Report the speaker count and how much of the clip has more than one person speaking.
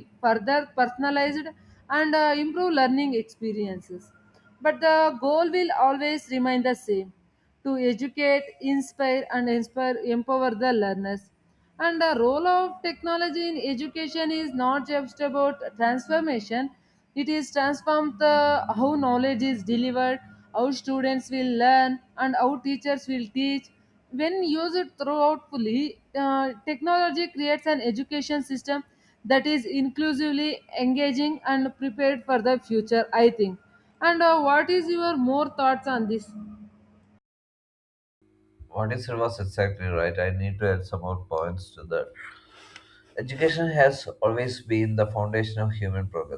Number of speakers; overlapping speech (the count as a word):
two, no overlap